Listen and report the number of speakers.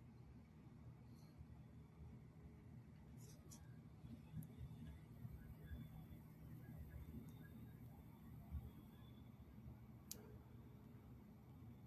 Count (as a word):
zero